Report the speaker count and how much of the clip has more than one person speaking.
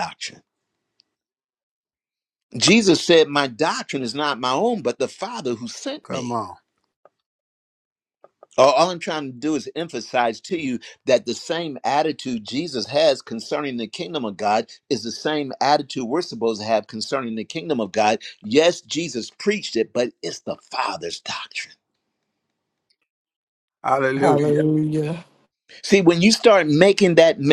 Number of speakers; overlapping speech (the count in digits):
3, about 3%